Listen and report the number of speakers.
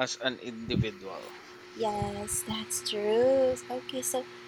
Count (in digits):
2